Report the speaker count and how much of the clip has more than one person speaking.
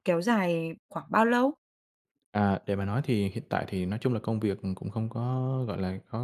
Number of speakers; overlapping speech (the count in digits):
2, no overlap